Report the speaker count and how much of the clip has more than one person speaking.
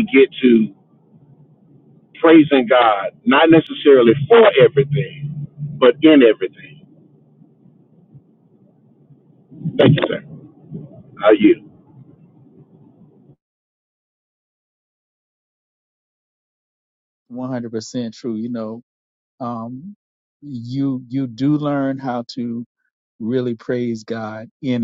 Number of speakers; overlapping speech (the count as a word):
two, no overlap